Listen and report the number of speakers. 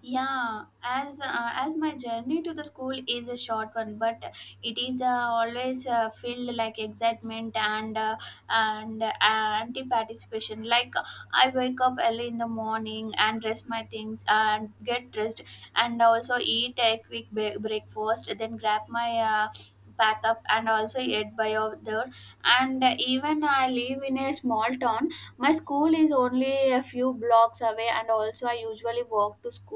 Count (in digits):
1